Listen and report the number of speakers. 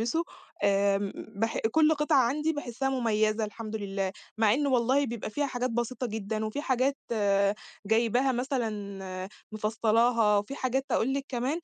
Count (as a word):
one